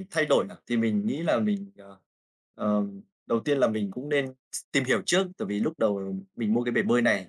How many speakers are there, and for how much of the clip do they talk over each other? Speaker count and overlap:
1, no overlap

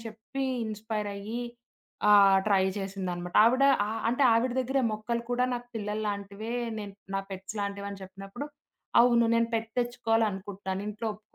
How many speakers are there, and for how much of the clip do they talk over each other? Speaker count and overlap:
1, no overlap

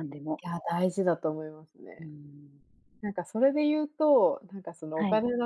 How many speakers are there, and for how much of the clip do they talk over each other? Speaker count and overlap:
2, about 5%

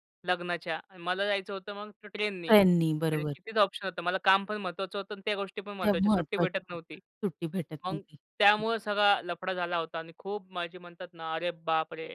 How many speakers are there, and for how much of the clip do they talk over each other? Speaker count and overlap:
2, about 12%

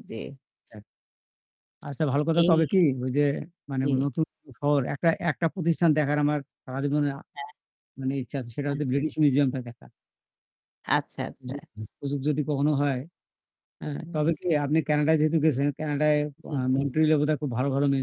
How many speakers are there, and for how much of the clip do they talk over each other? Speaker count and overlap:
2, about 4%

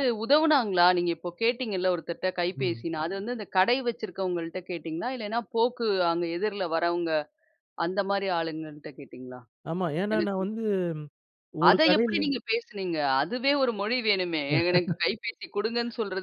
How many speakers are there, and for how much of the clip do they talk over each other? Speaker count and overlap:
2, about 7%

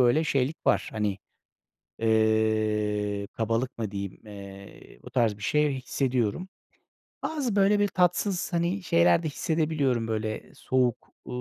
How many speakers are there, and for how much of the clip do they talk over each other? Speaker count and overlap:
1, no overlap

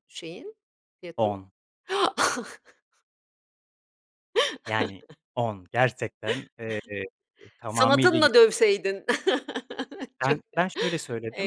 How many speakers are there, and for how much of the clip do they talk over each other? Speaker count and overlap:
2, about 9%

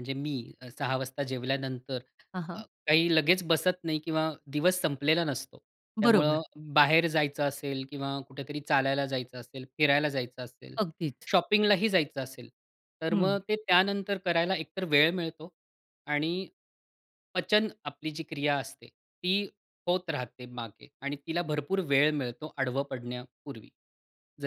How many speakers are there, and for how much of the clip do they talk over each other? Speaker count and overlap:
2, about 3%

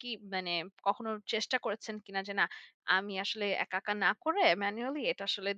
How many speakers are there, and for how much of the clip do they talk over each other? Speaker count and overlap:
1, no overlap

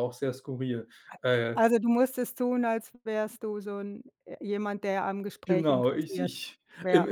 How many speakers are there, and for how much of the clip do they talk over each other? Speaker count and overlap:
2, about 15%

